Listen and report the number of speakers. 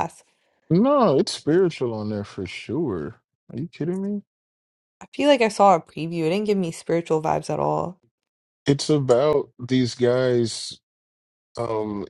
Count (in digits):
2